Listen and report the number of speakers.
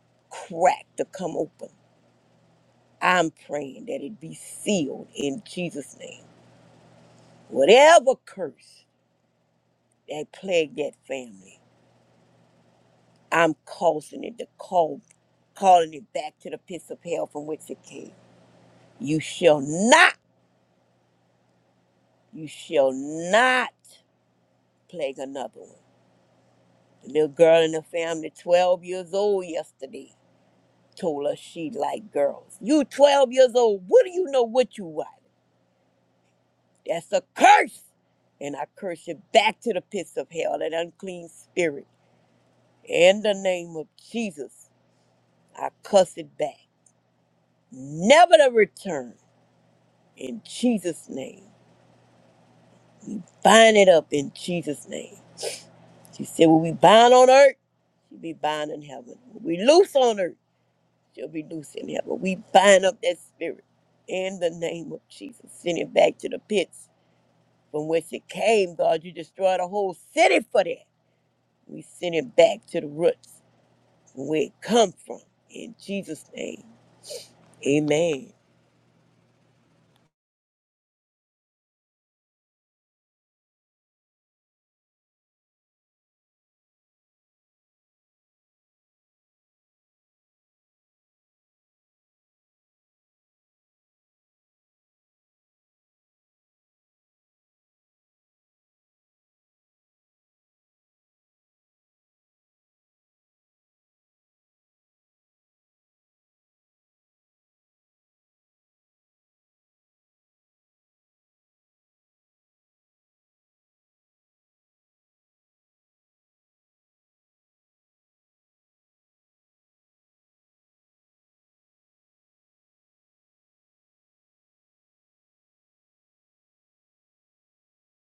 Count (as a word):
one